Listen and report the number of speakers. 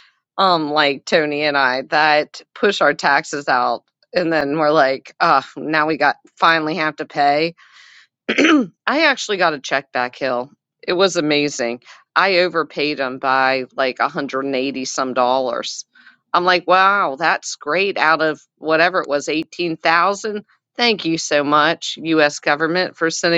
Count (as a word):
one